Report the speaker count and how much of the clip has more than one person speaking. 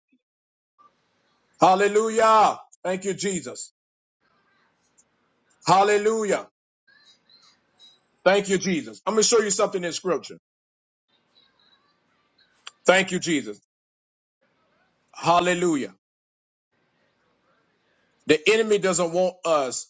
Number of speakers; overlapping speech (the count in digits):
1, no overlap